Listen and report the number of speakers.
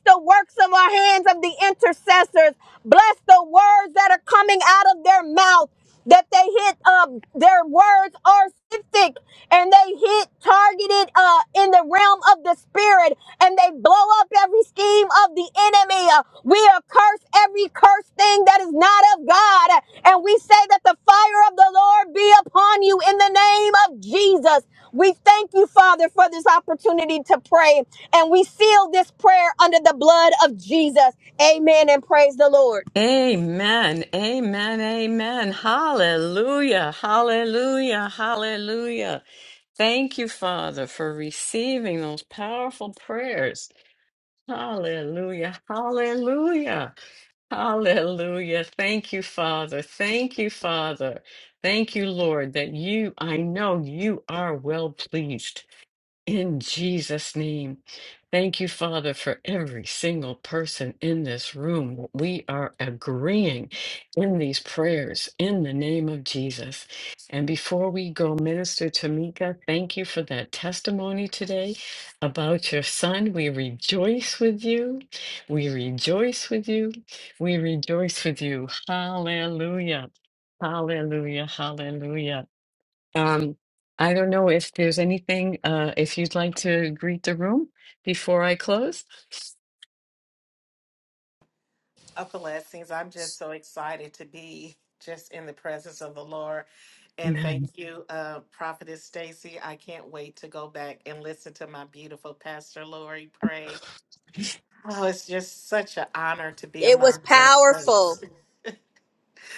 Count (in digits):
3